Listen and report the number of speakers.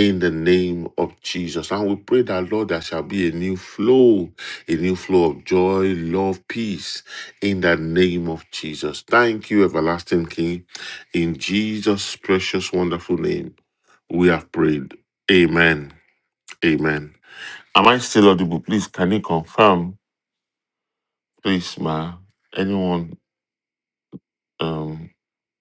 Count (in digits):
1